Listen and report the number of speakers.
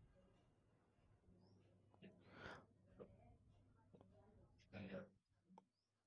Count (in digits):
0